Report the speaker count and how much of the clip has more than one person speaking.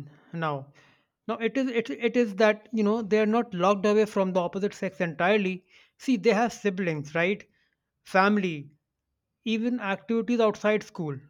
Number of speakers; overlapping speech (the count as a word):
one, no overlap